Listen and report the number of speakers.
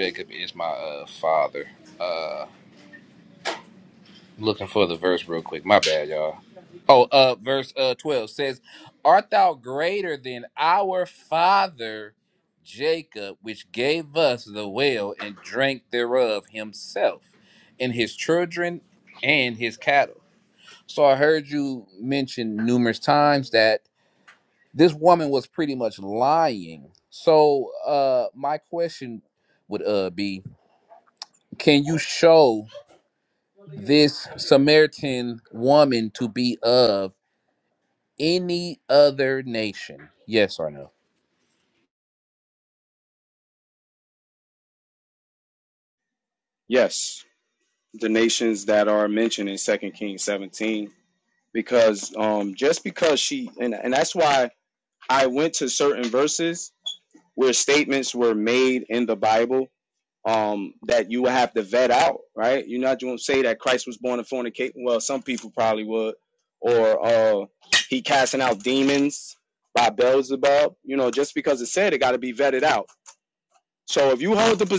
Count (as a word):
two